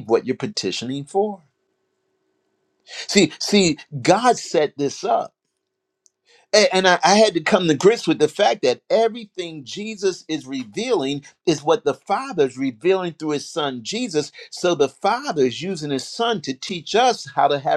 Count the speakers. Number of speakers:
1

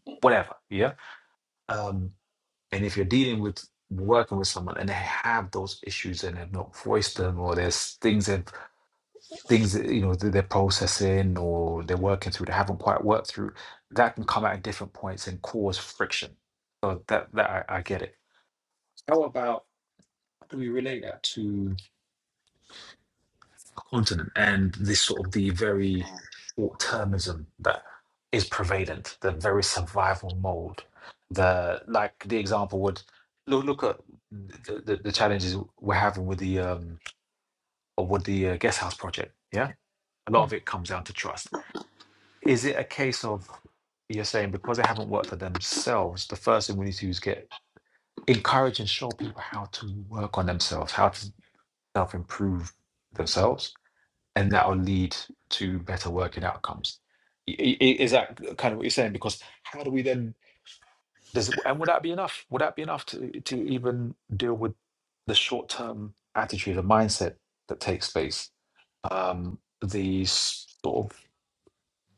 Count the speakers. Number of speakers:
1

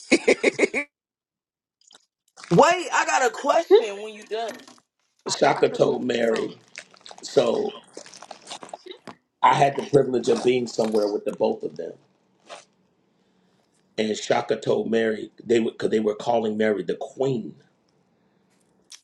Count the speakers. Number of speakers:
2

